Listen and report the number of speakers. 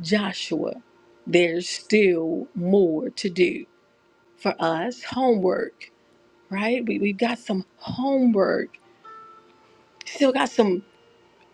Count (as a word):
one